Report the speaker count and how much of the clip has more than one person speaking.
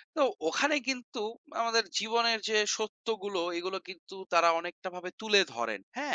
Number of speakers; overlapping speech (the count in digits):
1, no overlap